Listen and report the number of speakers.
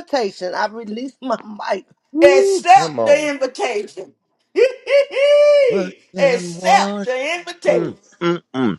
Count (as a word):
three